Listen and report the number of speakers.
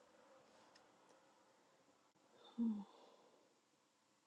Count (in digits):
0